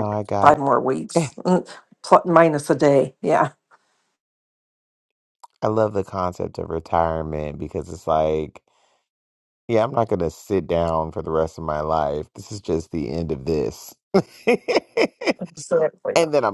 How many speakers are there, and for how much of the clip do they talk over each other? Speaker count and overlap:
2, about 4%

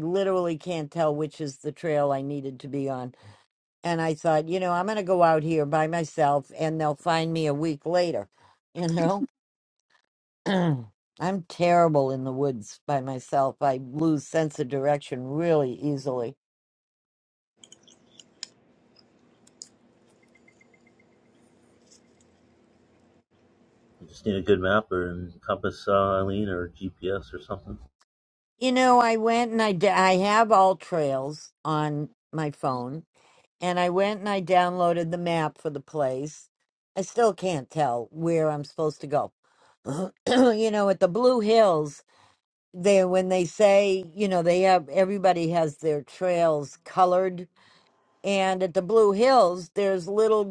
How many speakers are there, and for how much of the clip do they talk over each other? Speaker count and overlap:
2, no overlap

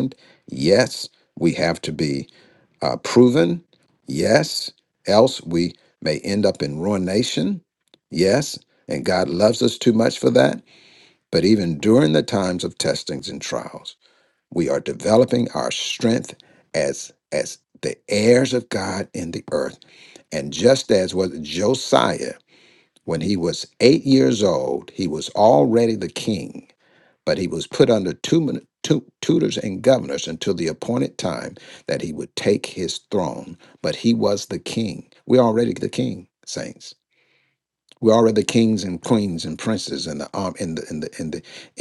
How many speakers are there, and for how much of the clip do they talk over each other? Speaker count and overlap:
1, no overlap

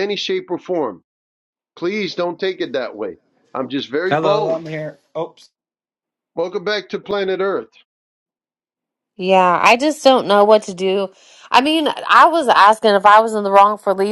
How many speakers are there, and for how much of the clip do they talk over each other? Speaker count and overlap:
3, about 4%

